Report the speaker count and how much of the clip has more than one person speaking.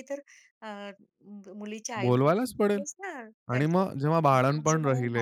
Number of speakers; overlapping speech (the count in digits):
2, about 23%